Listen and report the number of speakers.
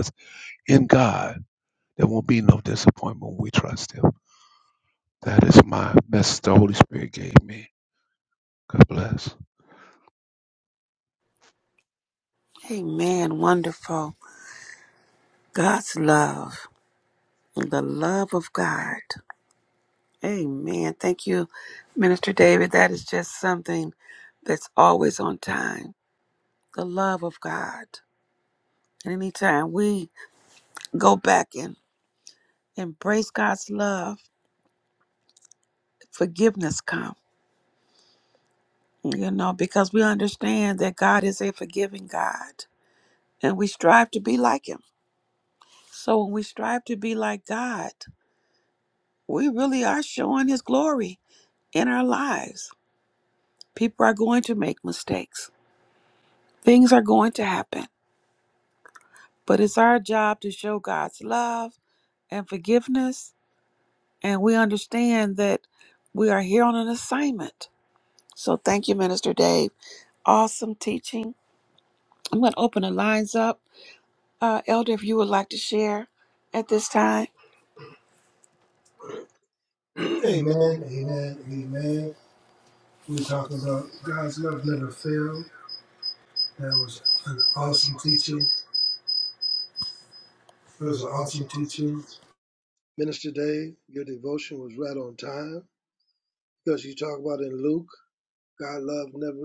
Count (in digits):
3